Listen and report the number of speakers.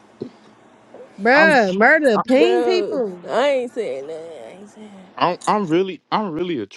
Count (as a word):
three